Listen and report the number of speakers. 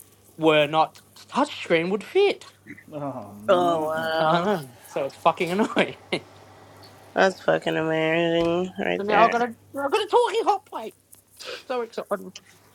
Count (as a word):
three